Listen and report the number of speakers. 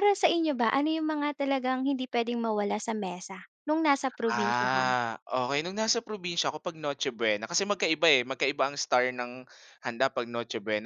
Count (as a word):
two